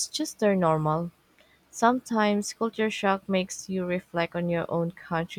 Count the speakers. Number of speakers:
1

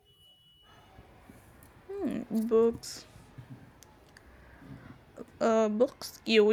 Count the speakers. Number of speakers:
1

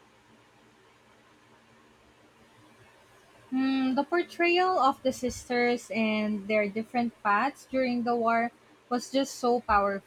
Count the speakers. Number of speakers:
1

